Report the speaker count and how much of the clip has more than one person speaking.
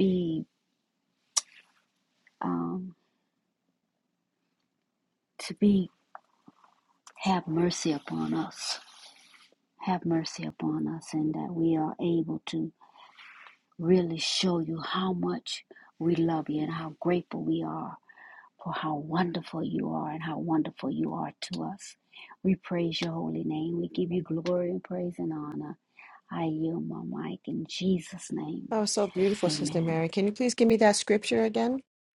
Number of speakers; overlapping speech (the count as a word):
two, about 2%